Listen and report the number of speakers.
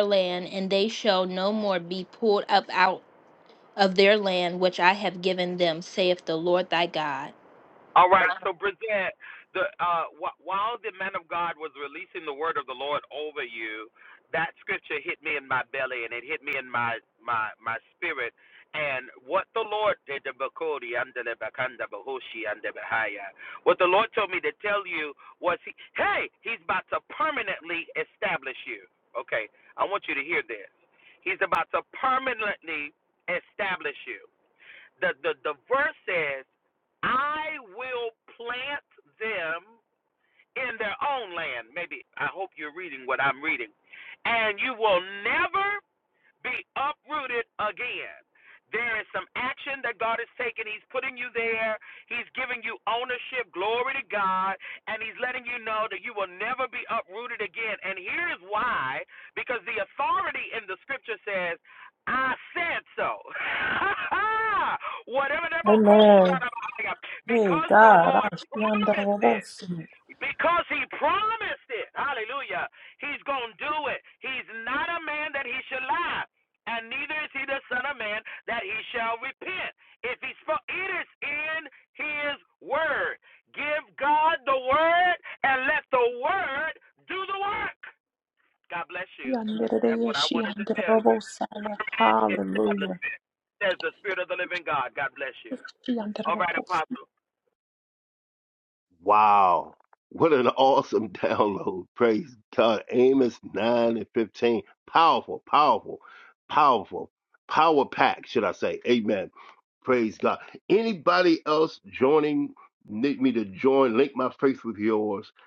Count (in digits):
4